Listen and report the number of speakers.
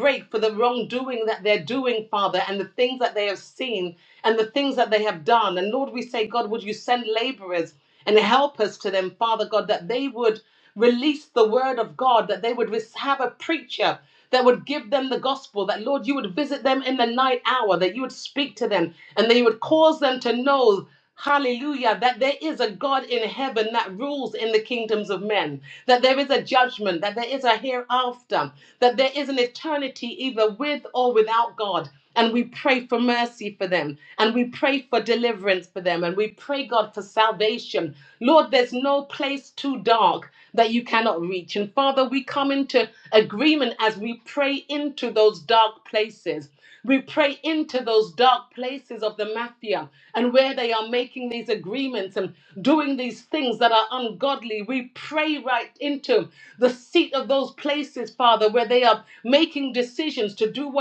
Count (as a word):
one